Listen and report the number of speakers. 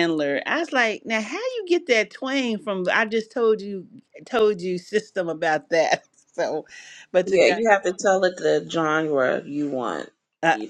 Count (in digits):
2